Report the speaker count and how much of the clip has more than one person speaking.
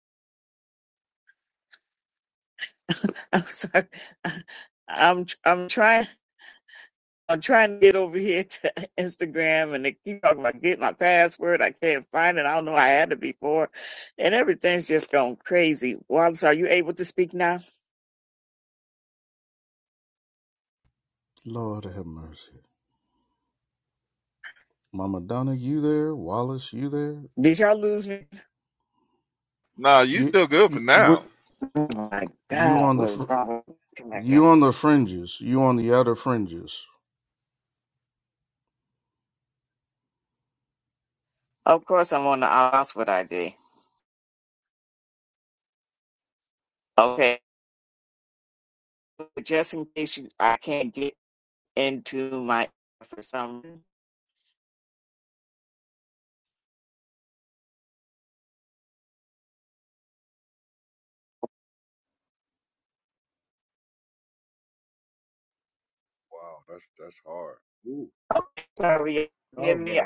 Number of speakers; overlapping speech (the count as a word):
four, about 3%